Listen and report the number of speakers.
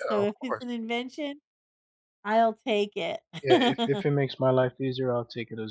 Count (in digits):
2